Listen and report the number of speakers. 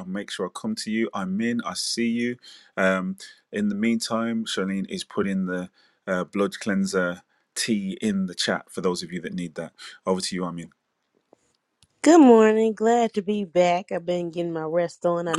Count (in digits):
2